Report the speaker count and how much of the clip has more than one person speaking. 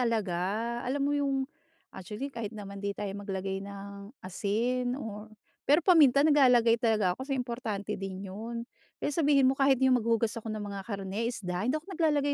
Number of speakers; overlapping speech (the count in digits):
1, no overlap